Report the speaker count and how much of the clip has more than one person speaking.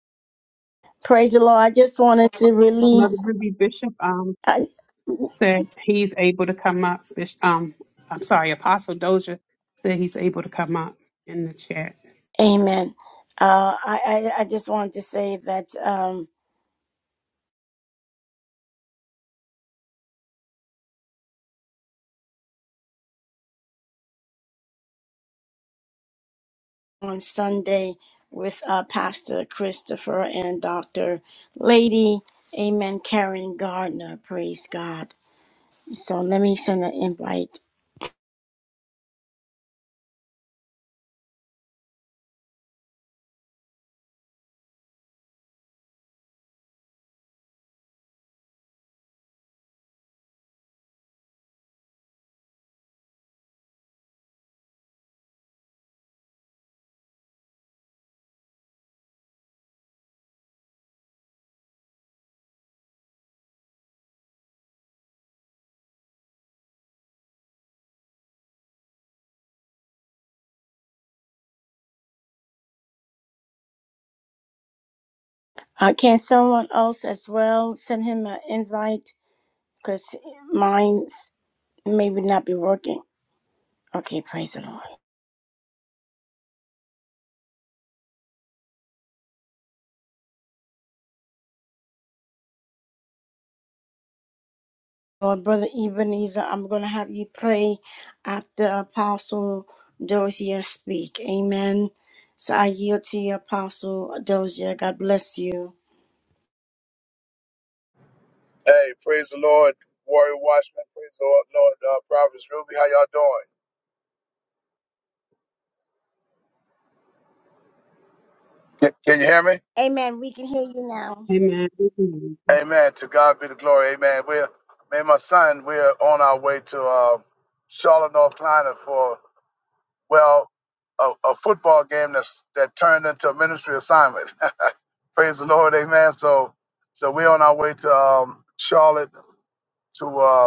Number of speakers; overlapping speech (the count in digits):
3, under 1%